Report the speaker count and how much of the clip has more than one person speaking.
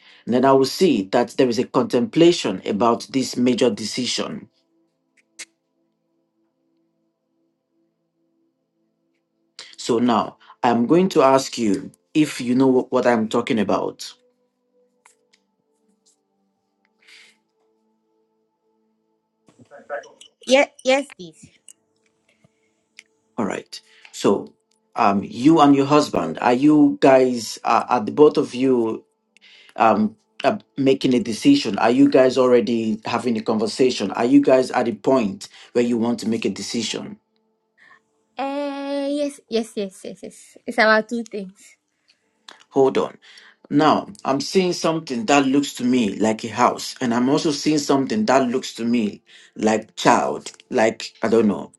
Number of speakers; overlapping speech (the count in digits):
2, no overlap